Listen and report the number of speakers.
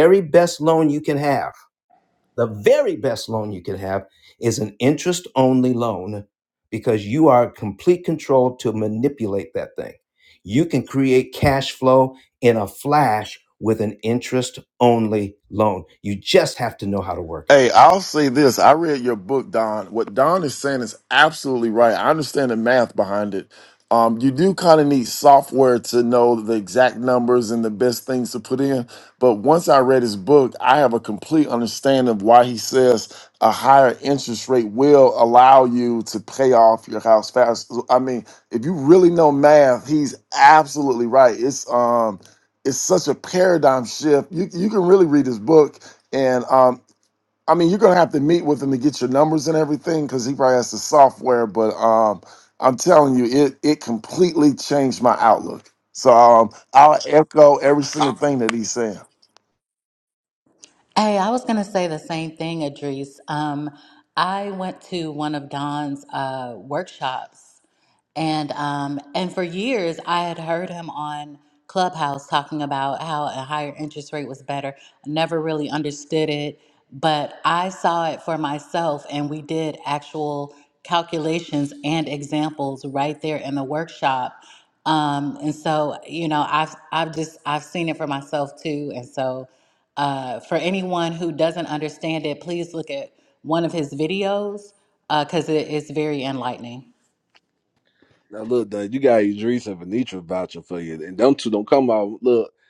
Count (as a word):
four